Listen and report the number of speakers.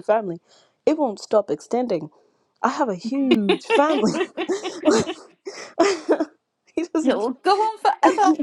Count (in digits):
2